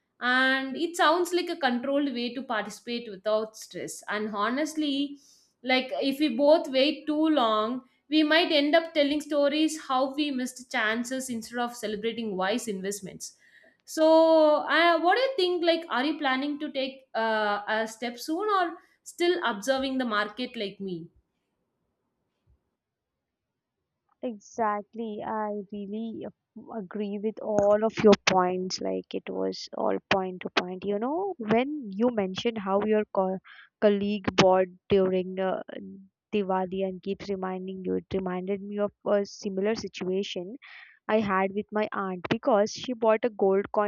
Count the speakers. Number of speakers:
2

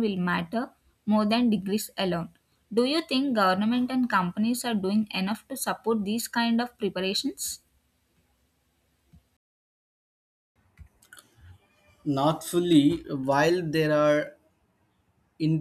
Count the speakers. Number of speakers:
2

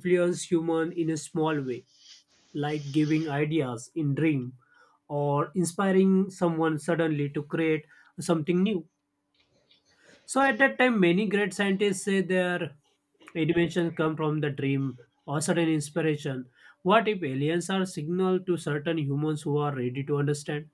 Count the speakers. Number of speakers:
1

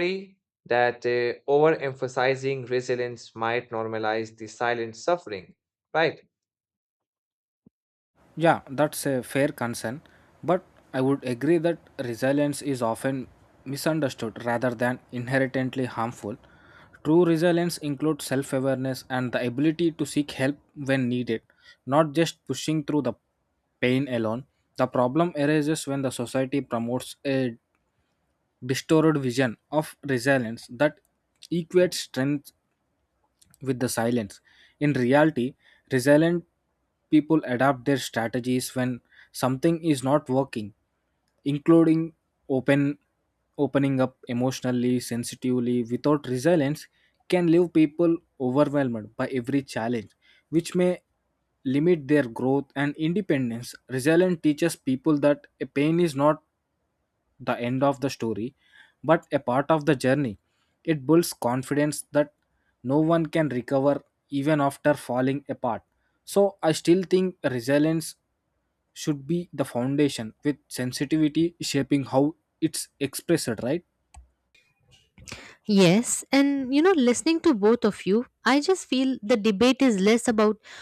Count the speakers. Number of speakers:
3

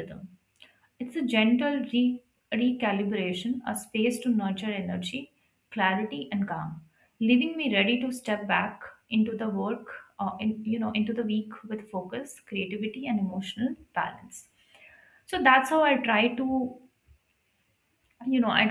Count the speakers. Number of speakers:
1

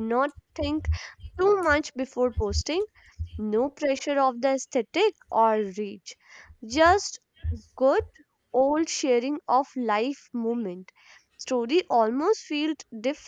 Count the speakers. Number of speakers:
1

